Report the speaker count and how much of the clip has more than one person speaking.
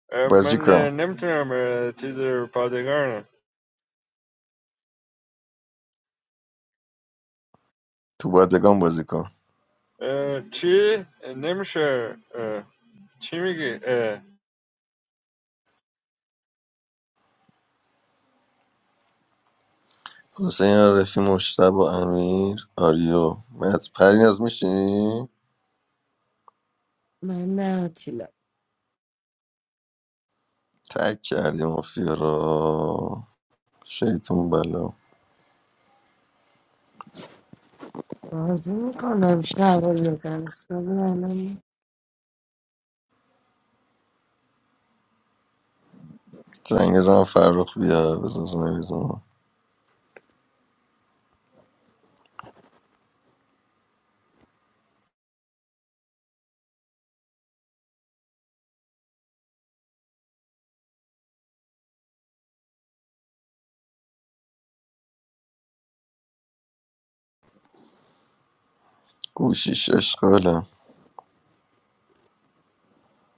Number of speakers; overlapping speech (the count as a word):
three, about 1%